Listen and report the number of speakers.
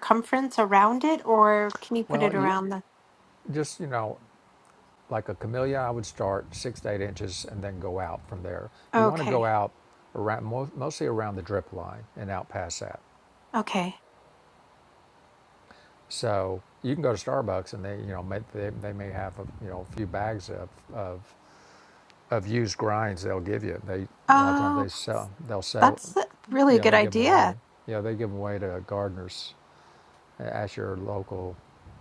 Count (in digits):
2